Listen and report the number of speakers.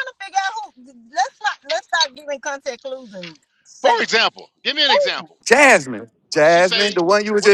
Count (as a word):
three